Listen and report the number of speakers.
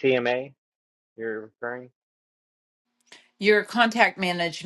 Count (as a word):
two